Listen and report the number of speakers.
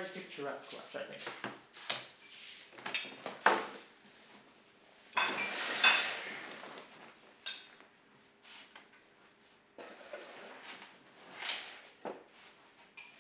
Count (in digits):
1